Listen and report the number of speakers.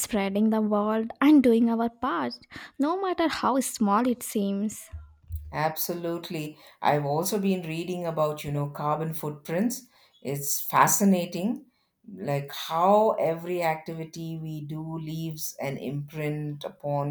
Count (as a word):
two